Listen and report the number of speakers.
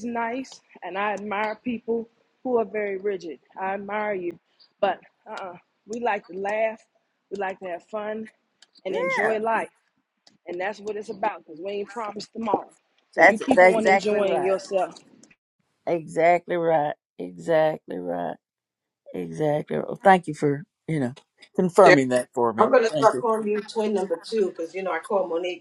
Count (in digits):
3